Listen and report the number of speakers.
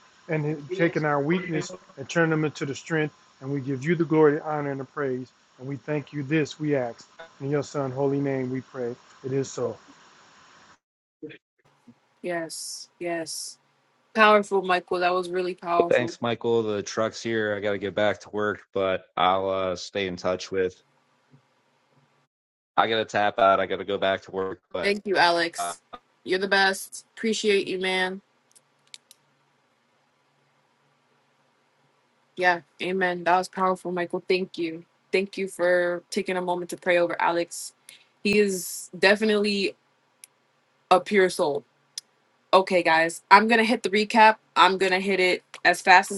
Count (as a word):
three